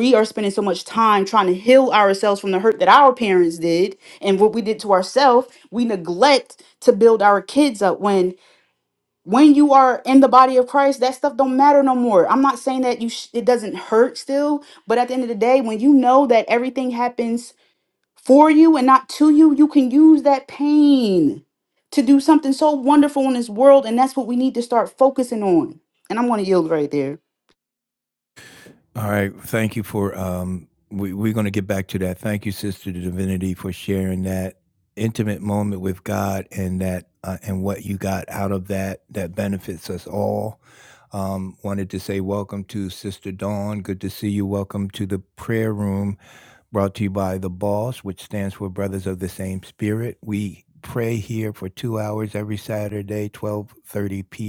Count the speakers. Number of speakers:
2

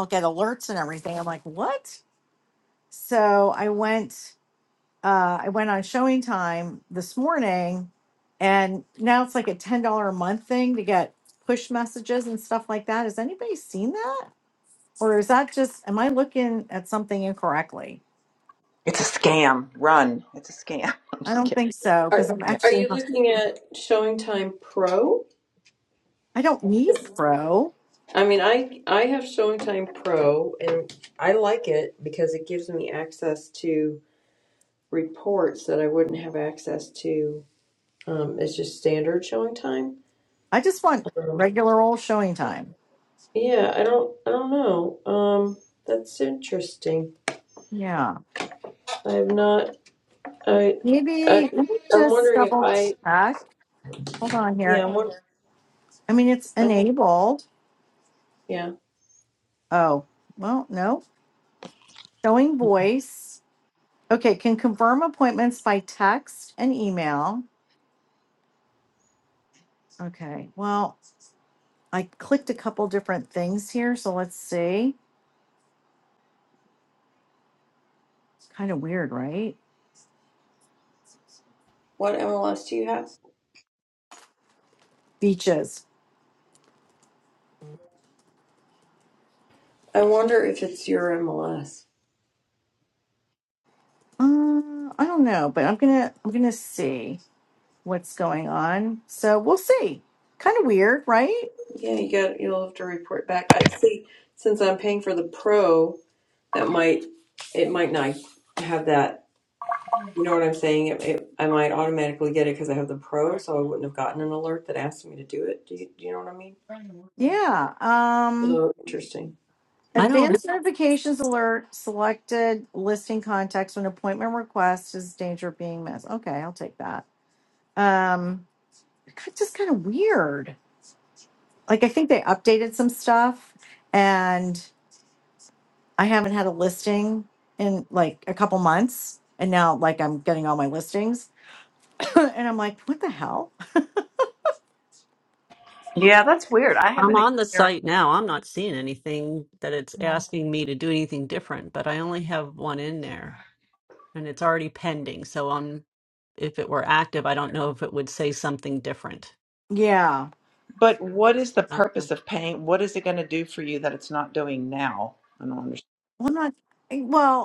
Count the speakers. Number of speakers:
4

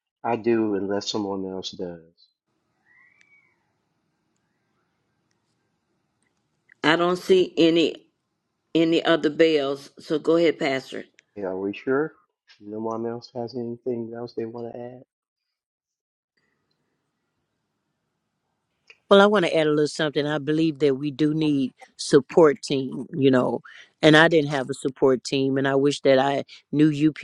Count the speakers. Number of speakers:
3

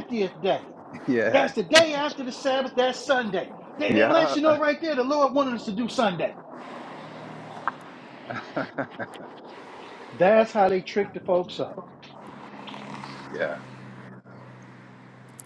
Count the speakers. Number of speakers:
2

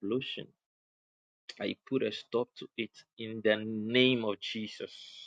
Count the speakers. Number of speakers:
1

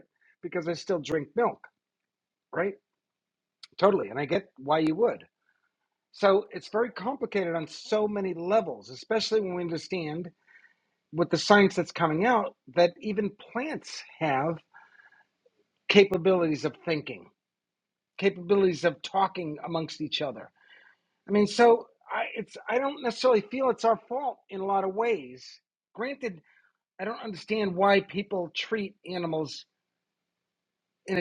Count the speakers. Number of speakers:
1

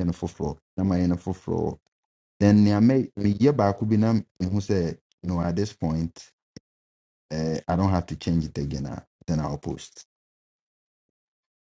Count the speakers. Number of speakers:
1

